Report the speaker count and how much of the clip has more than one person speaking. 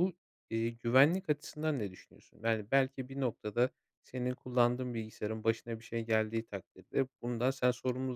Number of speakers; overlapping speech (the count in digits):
1, no overlap